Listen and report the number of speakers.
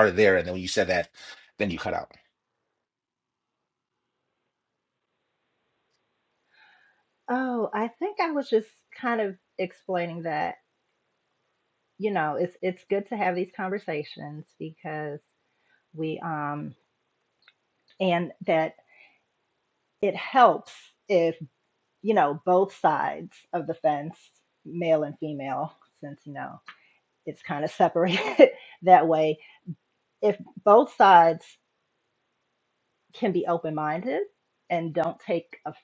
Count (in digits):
2